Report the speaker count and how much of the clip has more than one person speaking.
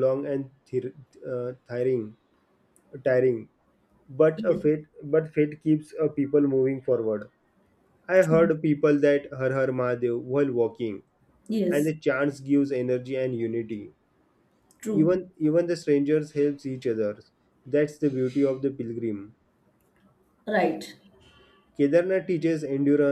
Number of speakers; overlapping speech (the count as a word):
two, about 3%